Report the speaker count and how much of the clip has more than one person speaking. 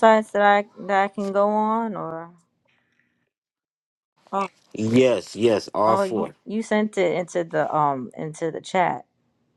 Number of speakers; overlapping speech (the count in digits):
2, about 5%